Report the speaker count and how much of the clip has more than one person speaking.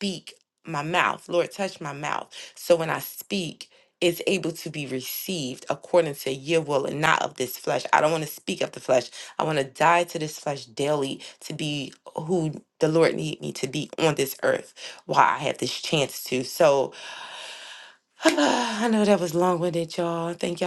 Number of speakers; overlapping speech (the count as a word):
one, no overlap